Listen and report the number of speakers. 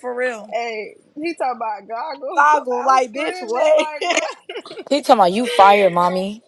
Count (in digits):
3